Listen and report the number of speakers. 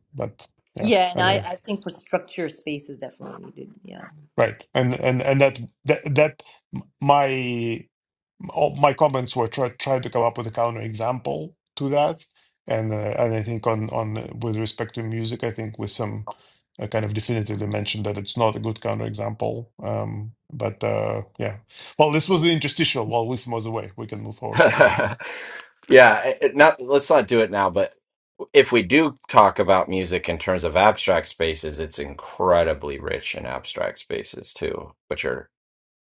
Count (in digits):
3